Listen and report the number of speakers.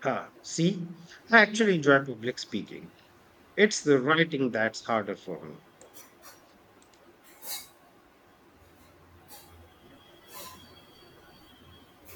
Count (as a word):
one